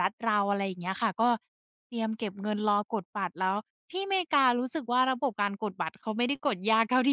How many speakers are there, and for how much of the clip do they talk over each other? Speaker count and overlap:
one, no overlap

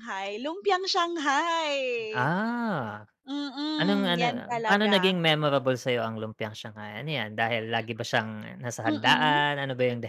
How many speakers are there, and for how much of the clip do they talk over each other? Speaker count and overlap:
two, about 19%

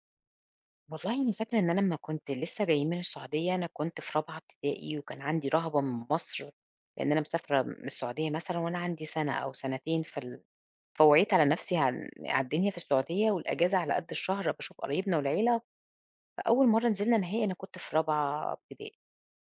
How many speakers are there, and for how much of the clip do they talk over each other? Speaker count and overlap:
one, no overlap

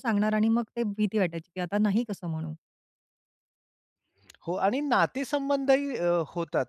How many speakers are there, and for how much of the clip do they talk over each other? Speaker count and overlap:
two, no overlap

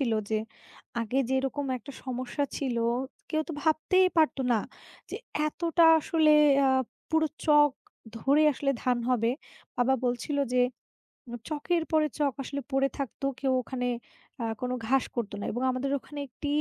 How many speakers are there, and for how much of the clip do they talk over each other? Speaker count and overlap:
one, no overlap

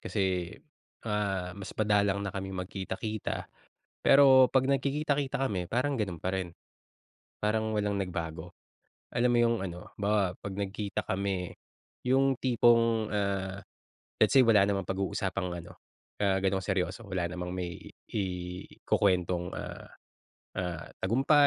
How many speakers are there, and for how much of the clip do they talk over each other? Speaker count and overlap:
one, no overlap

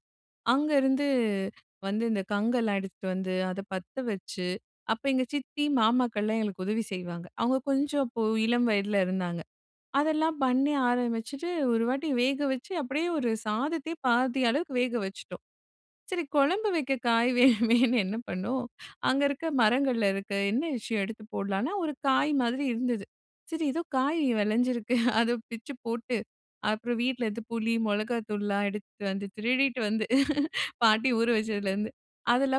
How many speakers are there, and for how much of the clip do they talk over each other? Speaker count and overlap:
one, no overlap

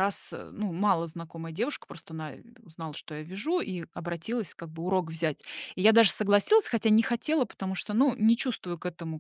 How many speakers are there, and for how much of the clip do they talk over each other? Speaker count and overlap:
one, no overlap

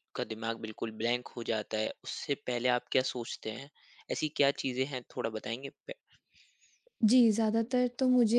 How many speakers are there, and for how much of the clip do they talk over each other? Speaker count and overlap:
two, no overlap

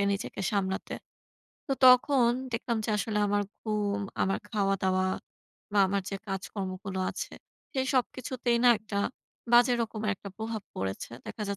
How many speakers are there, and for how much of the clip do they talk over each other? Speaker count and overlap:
one, no overlap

